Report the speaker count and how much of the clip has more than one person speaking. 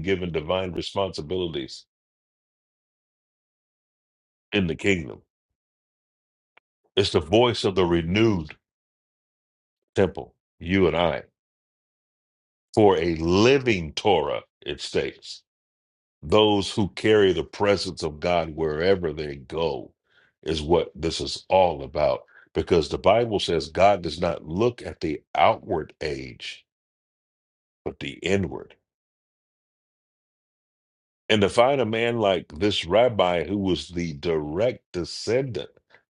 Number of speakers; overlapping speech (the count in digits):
1, no overlap